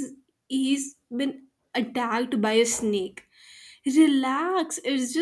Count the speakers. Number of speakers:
1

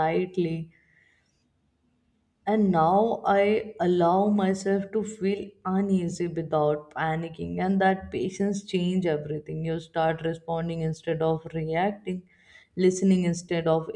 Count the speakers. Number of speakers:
1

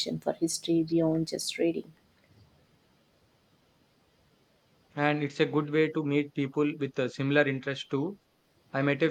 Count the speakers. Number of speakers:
2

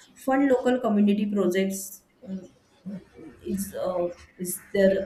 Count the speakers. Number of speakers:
1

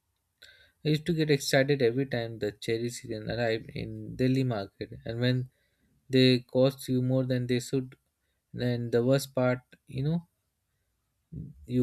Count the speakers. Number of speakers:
1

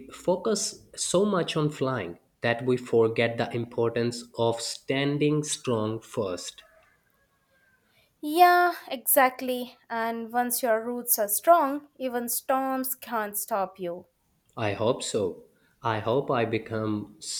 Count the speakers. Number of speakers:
2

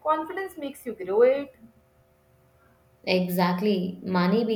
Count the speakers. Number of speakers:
2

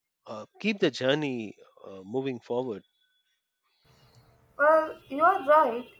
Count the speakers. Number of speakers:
2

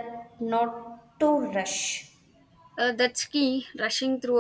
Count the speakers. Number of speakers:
2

